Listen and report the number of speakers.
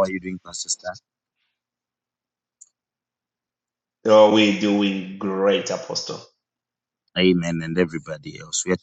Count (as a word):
two